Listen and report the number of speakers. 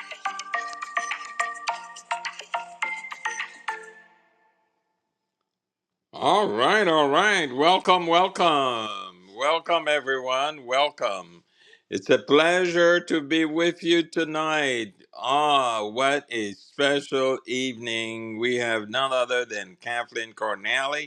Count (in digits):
1